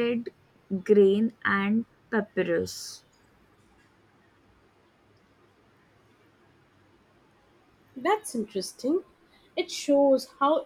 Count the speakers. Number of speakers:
2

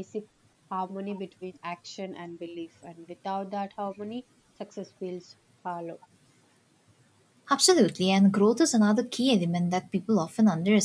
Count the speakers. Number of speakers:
2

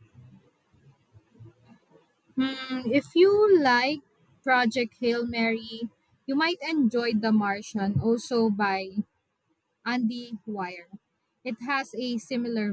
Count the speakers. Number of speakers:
1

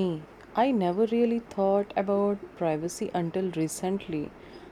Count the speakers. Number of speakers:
1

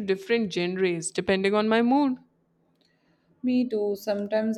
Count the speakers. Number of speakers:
2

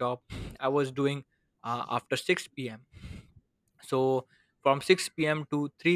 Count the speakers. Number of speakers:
1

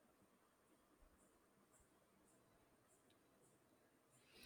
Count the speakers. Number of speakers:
0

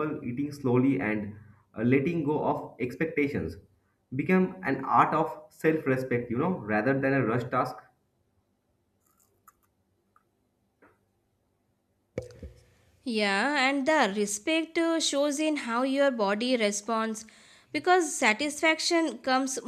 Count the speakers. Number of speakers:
2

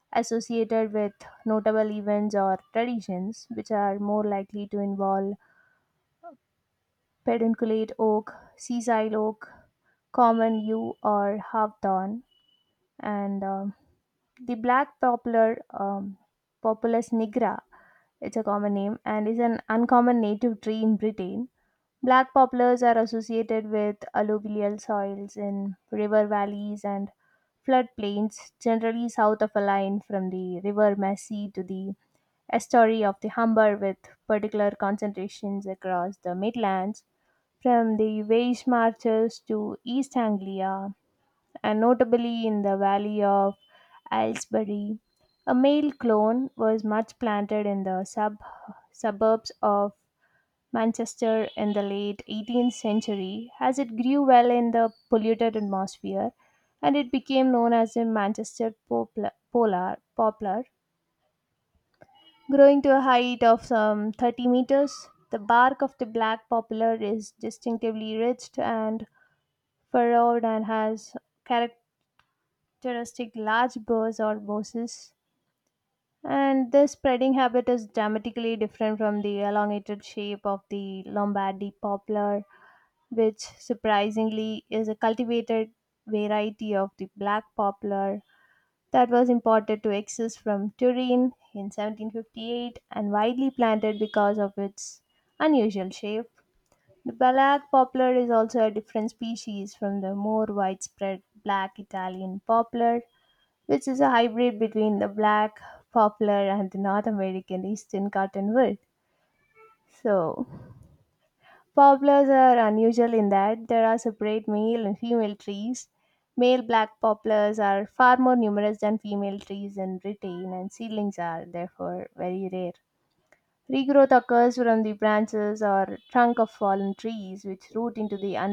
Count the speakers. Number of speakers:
1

